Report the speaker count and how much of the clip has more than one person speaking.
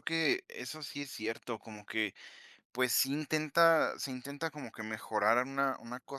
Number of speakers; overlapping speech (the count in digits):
1, no overlap